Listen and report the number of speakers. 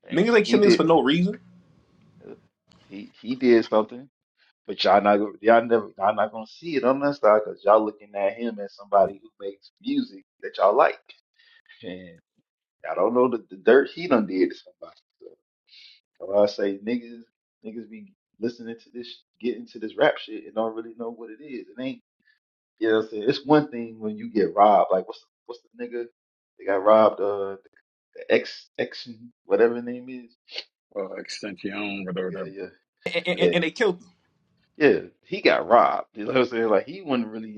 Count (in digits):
3